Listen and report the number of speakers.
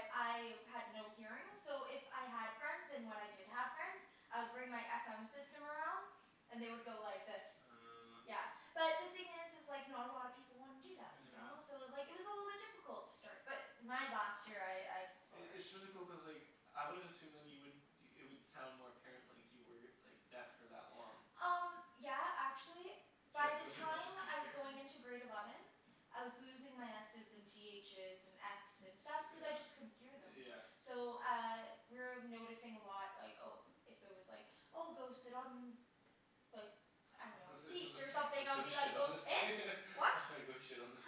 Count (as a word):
two